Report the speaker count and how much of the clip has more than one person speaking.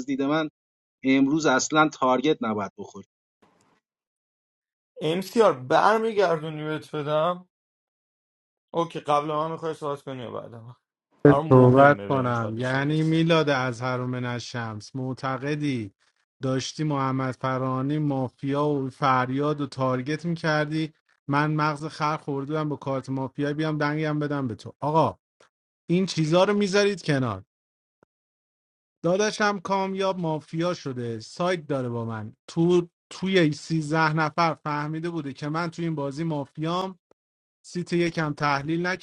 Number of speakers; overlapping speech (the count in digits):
3, about 4%